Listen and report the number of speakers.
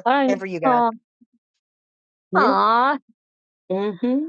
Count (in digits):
2